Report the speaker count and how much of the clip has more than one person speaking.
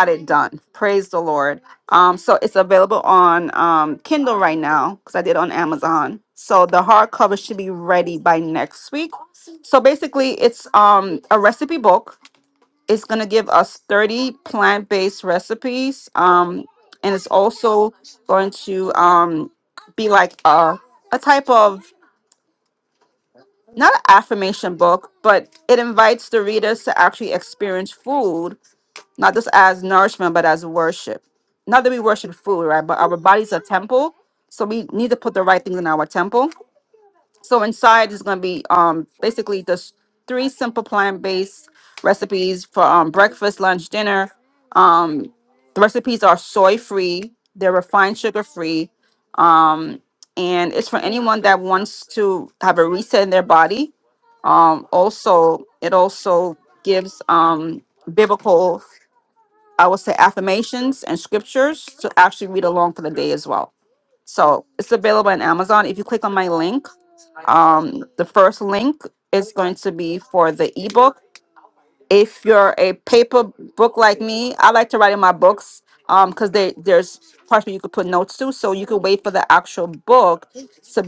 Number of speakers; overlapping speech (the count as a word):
one, no overlap